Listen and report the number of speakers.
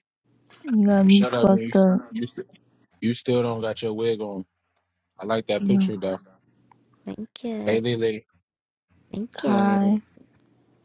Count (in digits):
3